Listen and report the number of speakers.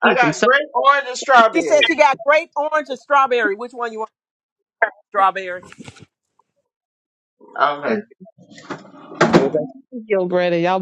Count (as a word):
three